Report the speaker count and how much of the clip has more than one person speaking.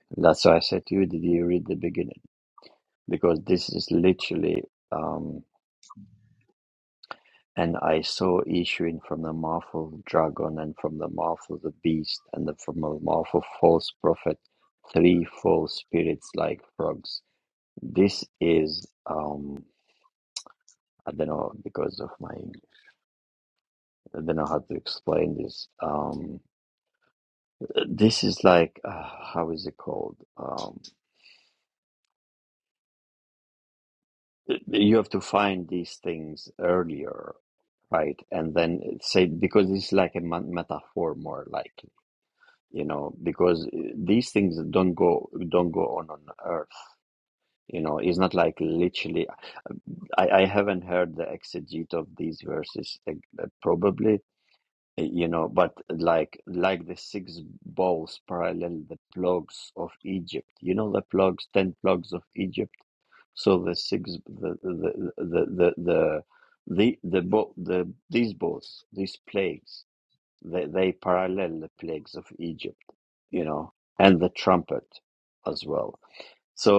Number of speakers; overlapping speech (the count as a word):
one, no overlap